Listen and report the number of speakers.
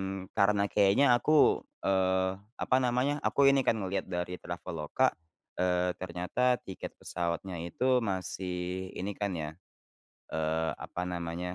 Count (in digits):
1